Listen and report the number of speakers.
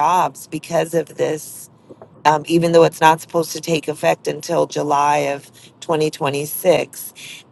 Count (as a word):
one